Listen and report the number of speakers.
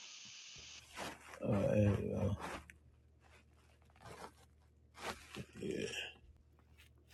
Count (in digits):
0